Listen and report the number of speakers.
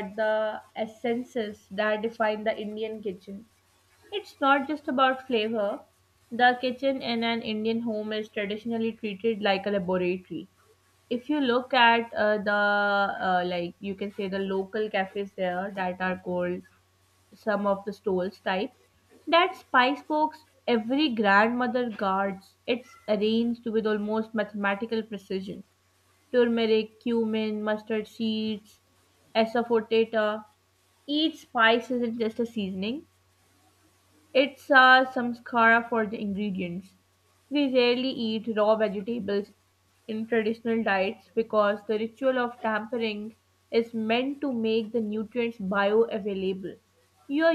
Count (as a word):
one